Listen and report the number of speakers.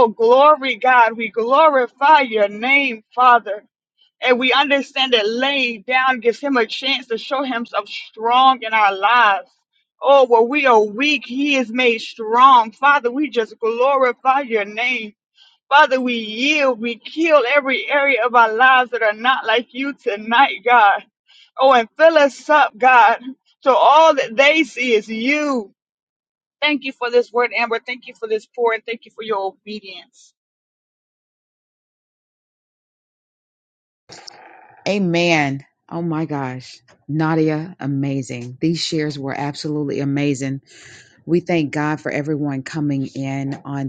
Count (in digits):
2